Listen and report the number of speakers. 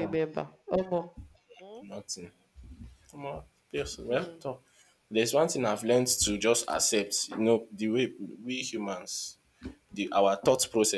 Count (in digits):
2